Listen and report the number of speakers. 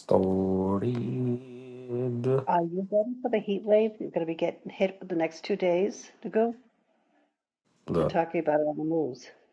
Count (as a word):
two